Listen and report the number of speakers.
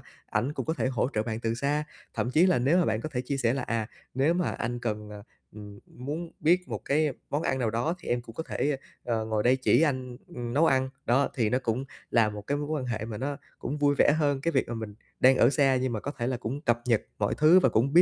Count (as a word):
one